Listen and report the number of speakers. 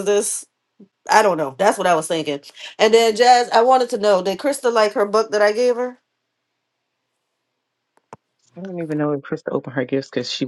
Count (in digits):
2